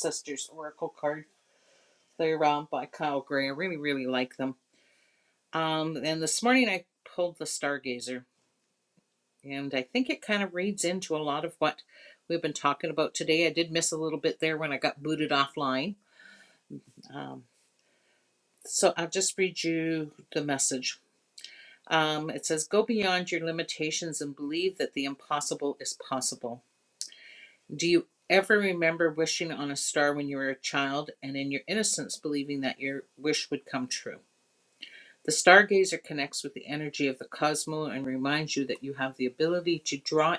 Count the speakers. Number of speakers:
1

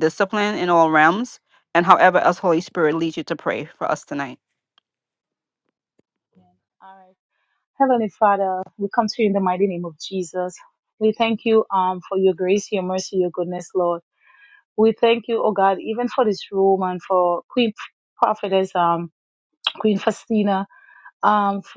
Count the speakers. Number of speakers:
2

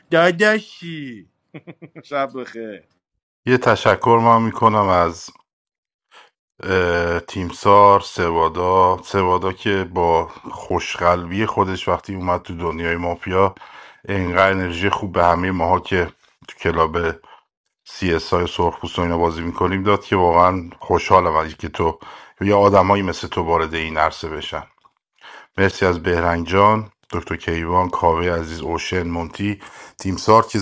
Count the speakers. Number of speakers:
2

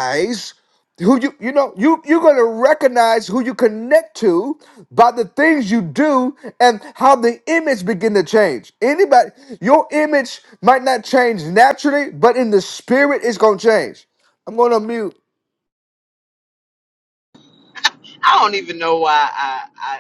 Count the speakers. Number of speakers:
2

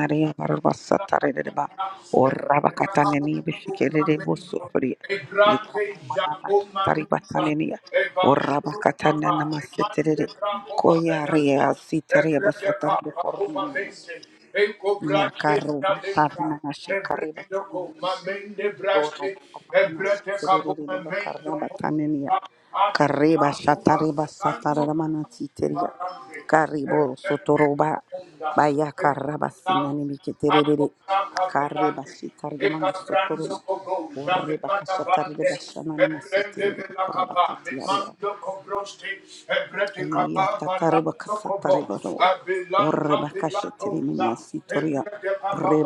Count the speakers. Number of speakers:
2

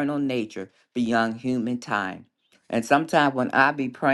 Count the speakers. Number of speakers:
1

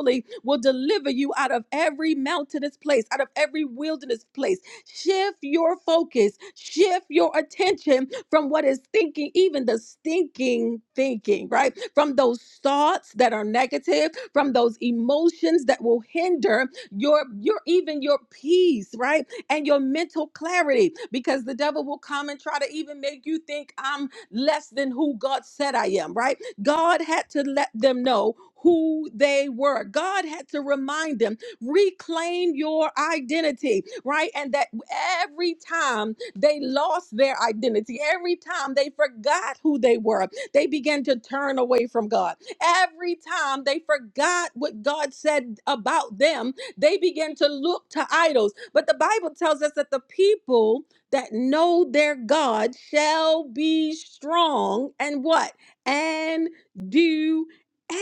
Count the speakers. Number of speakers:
1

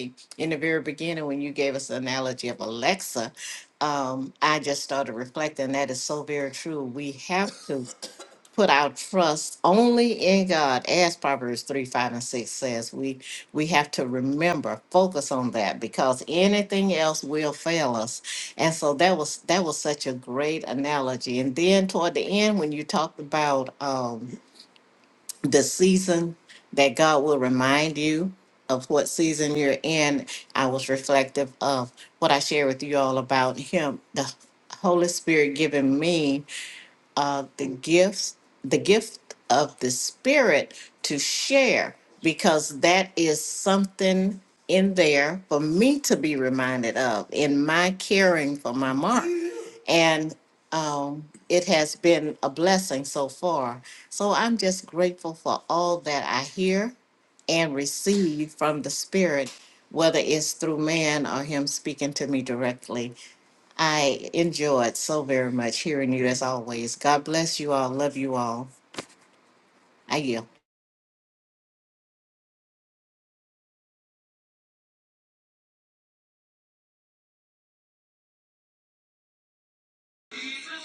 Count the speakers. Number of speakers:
1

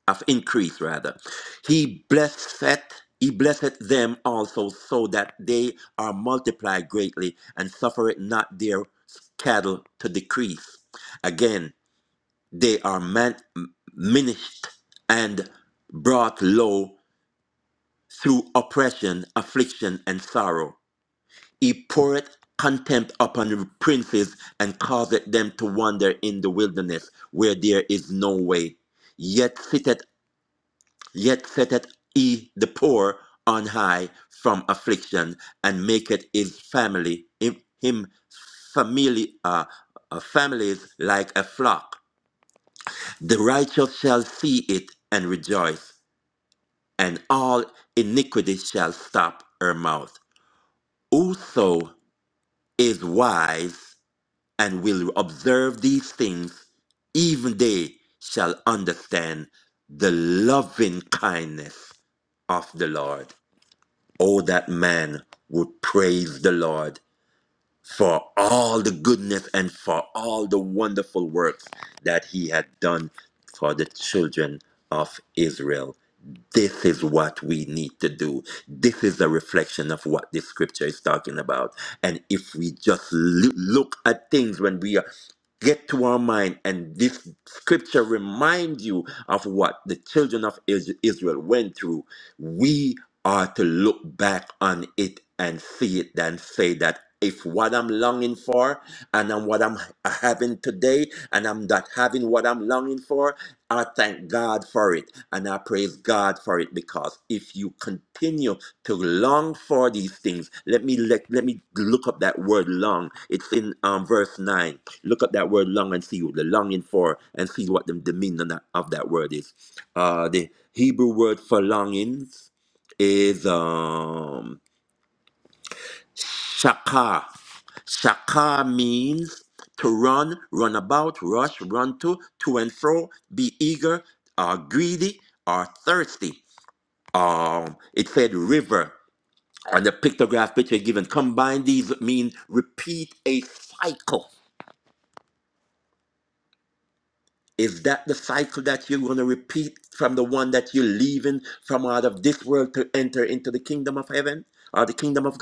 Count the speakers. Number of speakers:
1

